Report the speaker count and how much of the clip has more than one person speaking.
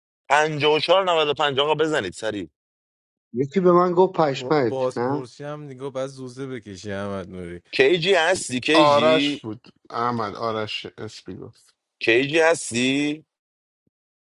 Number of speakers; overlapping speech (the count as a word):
four, about 10%